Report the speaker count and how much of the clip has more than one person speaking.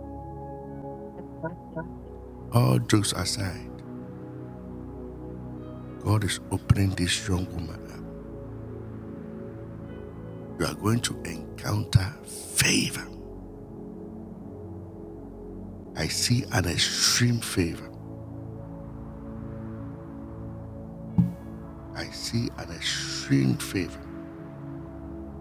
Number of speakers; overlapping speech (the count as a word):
one, no overlap